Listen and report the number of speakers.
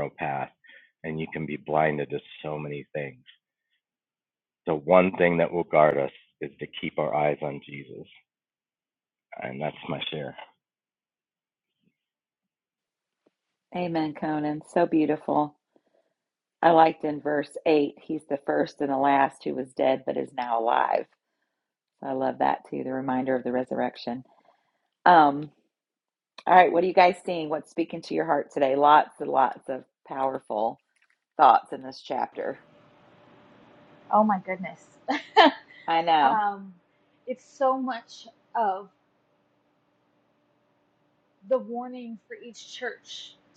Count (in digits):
3